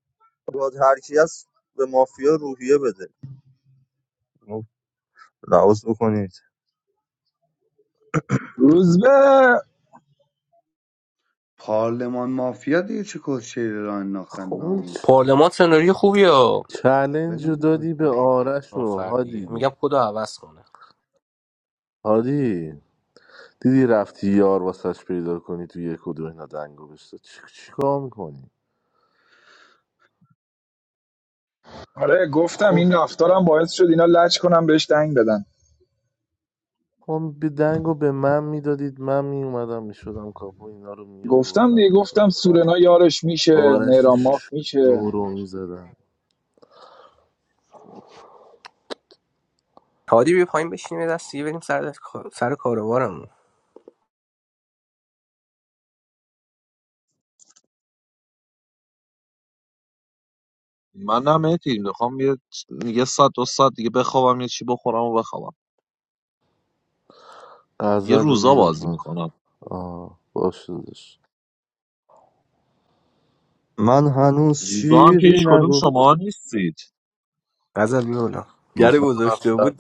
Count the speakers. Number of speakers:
6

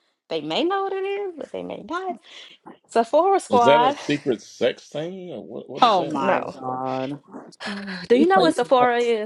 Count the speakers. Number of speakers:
3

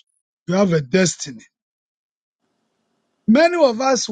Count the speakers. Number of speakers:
1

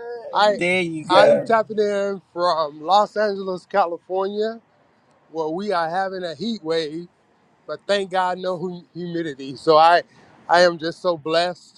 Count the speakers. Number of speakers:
2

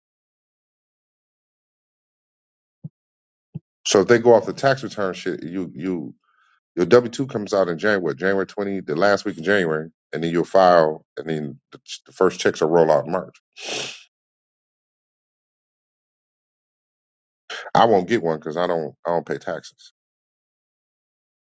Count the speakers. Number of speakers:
1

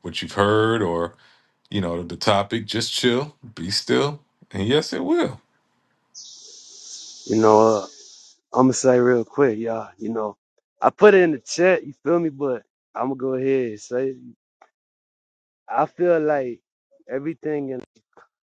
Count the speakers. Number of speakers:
2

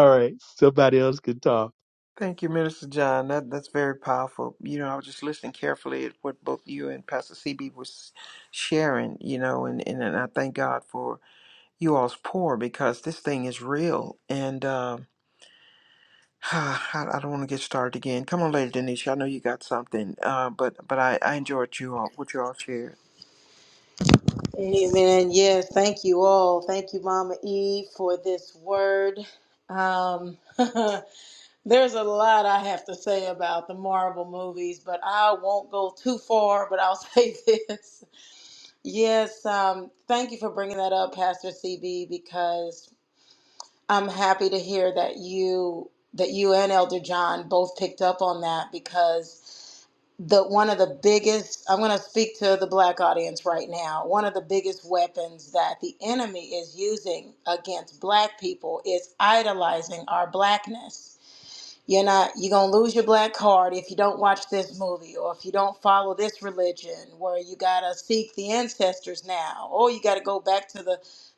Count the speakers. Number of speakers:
3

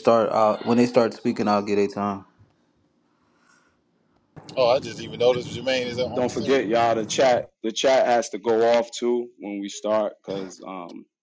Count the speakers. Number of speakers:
3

